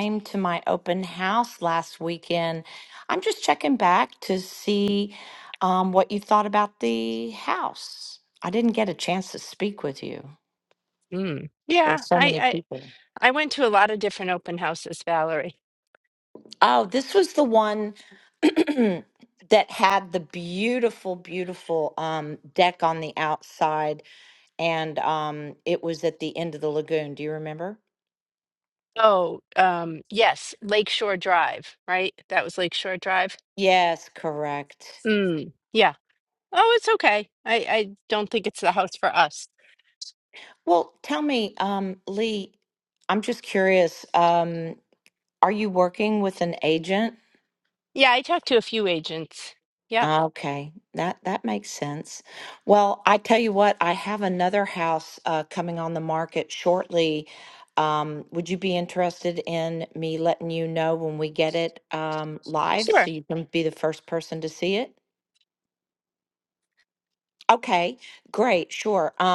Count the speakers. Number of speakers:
2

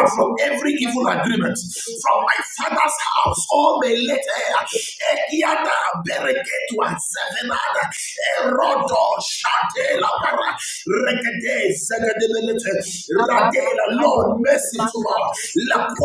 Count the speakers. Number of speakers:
1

